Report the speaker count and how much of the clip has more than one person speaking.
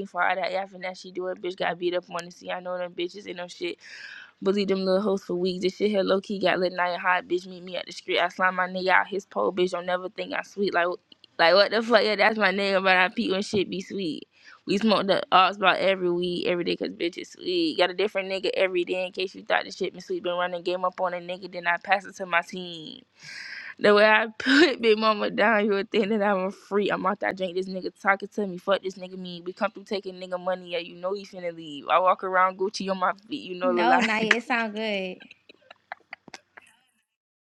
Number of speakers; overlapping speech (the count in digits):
2, about 1%